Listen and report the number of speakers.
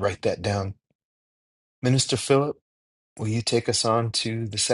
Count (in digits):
1